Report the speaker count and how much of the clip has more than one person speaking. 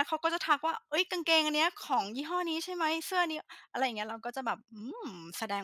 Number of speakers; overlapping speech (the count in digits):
1, no overlap